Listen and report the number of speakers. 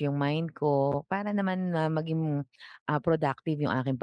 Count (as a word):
one